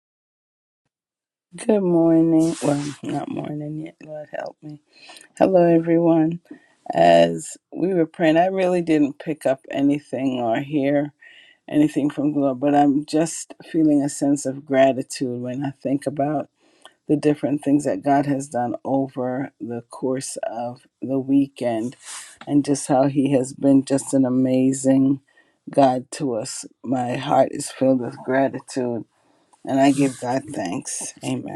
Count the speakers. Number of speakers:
1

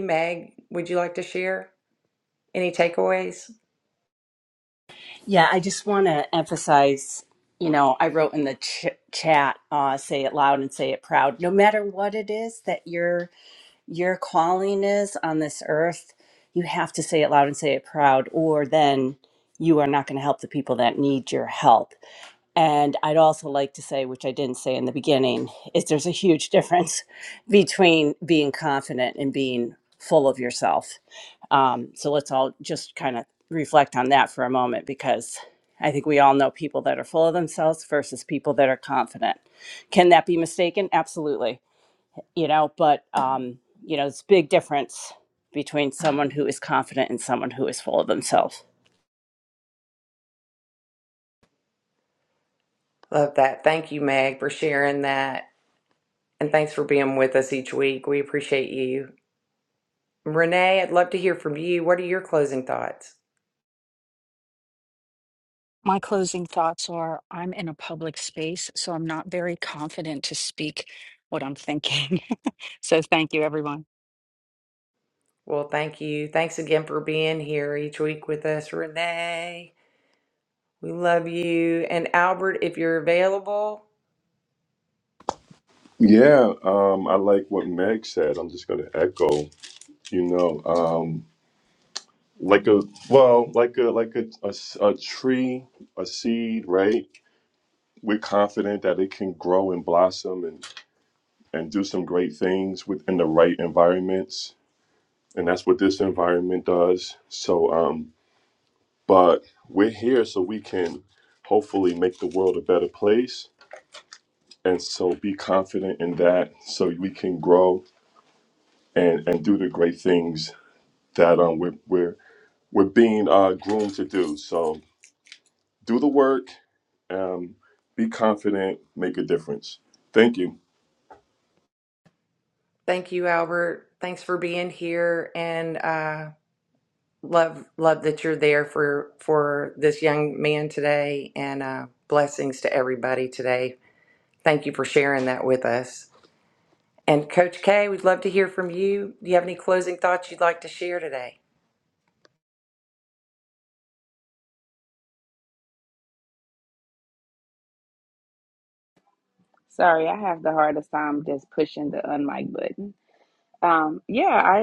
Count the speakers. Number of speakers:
5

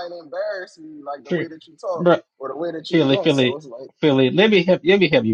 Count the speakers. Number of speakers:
2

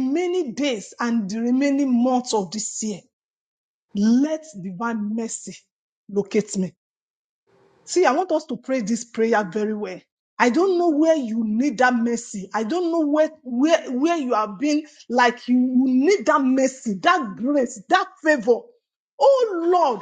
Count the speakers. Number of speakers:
1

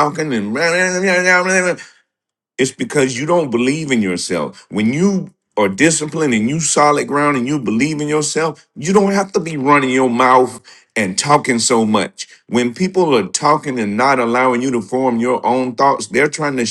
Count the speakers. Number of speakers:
1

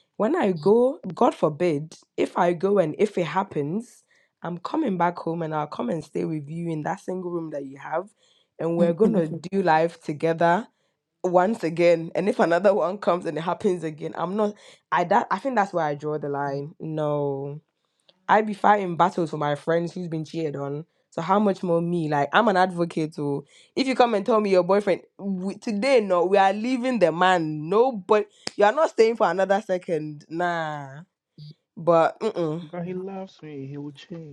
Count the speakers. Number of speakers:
2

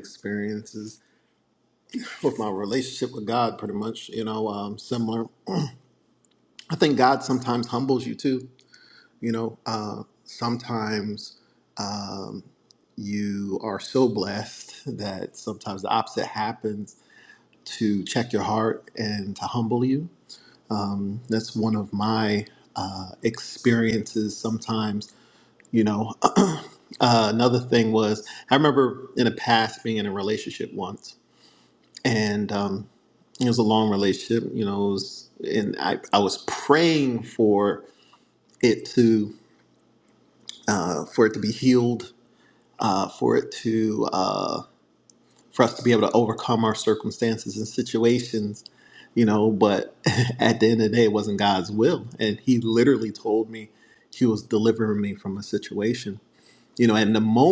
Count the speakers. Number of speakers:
1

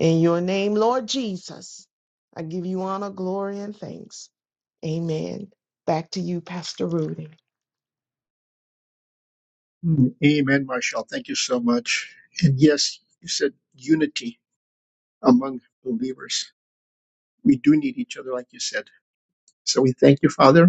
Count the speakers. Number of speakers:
2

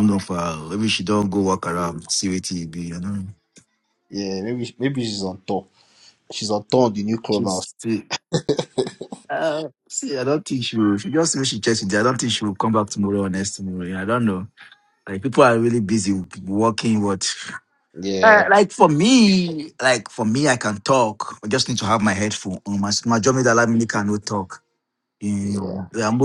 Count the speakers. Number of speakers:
2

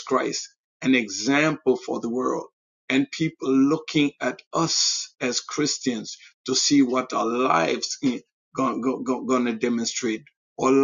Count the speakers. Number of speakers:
1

